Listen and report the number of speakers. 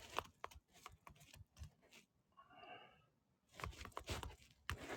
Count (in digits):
0